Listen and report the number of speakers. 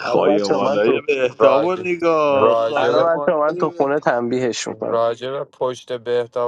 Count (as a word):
three